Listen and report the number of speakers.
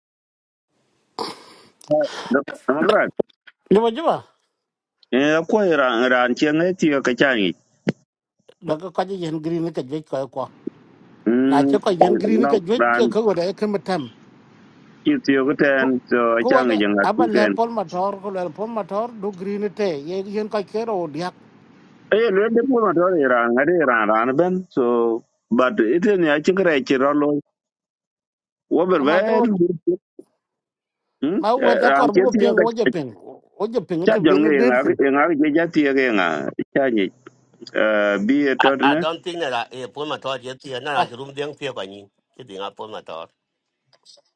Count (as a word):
three